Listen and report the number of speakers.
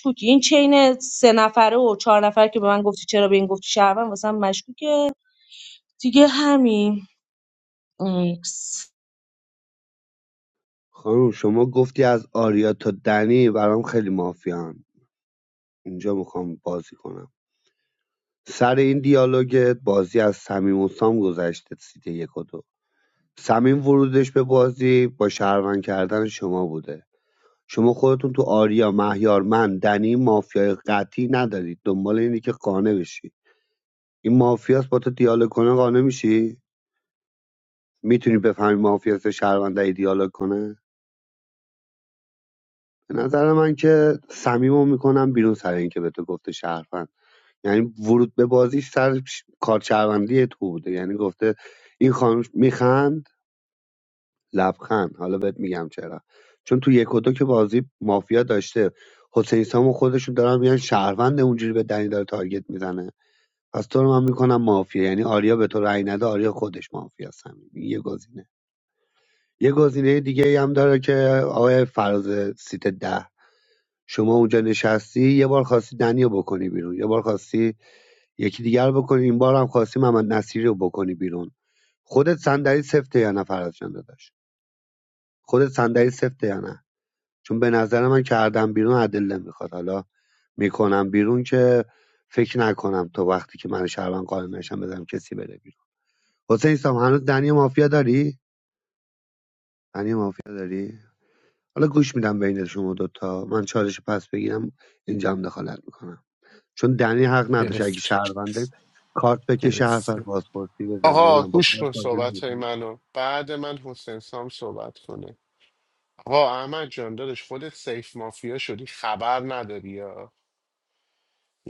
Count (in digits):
3